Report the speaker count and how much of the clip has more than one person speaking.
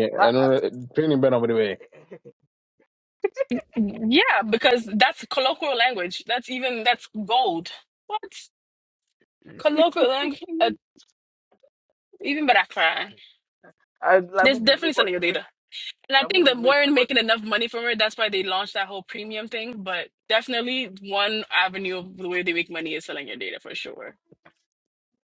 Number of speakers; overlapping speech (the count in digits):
3, about 6%